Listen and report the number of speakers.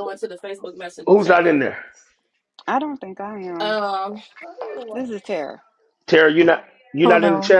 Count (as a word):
three